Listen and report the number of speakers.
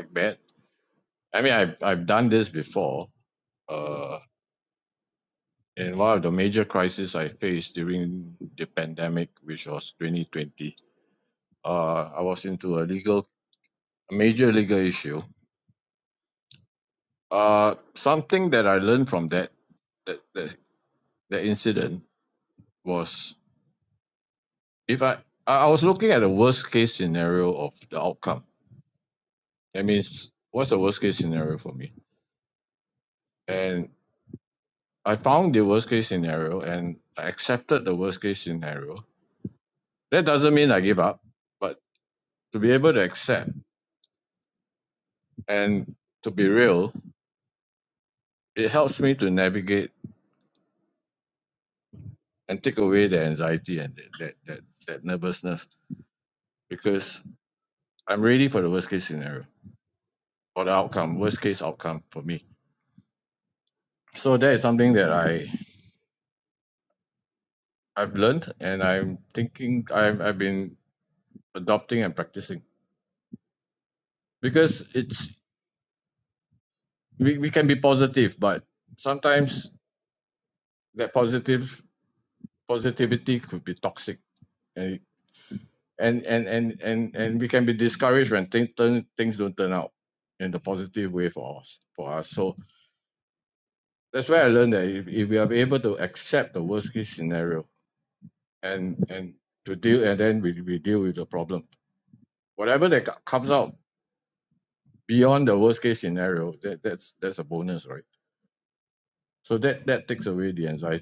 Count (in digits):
1